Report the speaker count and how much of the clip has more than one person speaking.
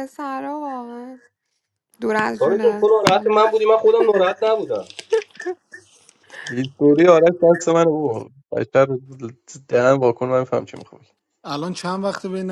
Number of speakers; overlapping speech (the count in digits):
4, about 8%